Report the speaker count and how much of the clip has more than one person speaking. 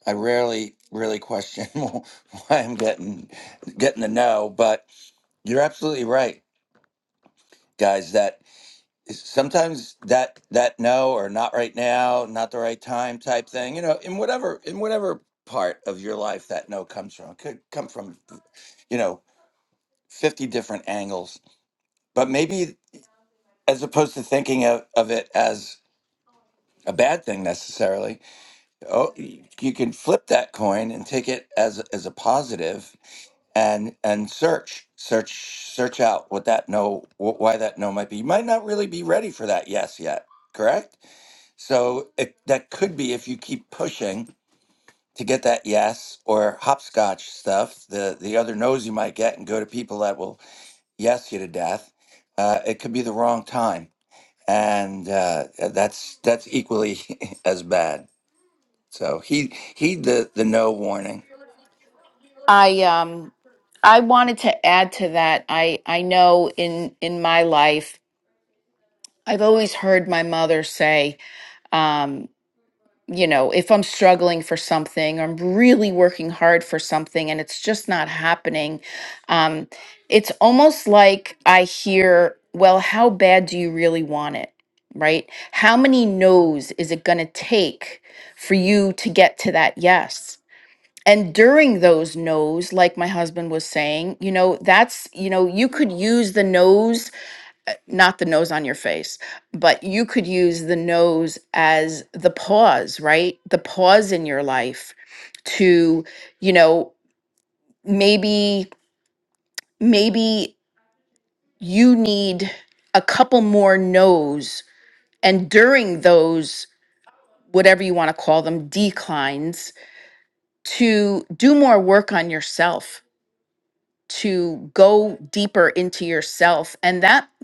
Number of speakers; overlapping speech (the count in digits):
2, no overlap